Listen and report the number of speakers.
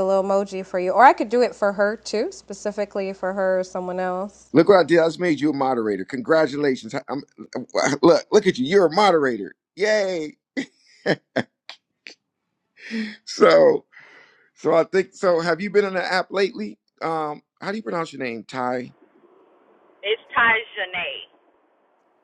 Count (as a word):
three